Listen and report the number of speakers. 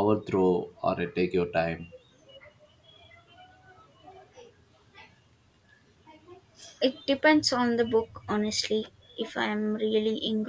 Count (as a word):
two